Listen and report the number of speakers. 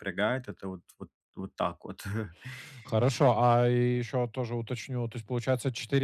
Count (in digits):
2